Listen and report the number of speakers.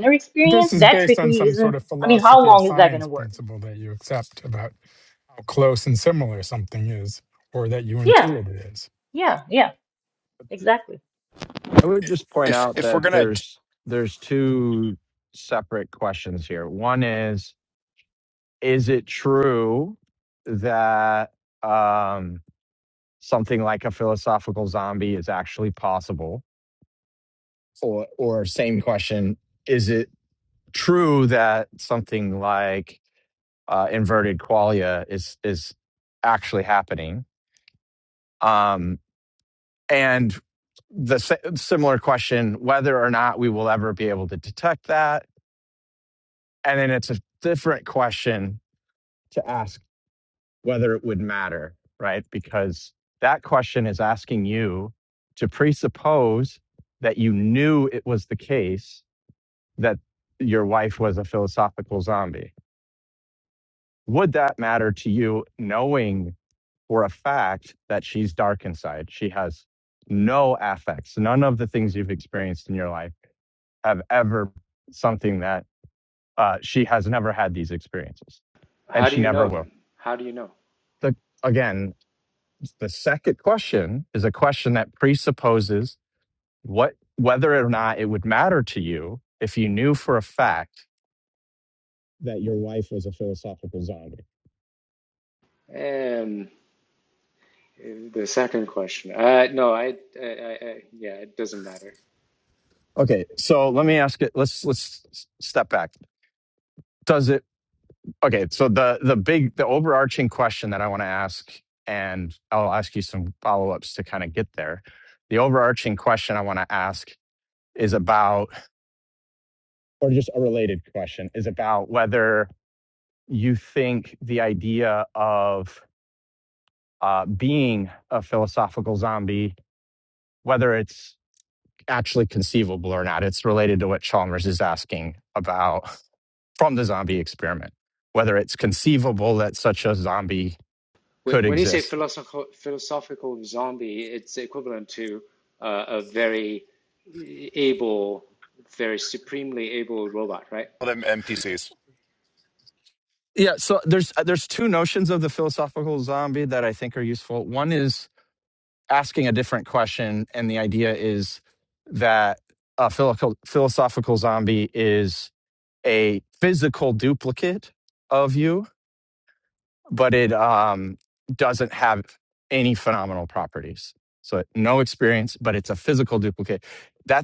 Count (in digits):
5